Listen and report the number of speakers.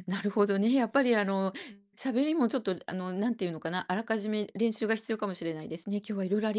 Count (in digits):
1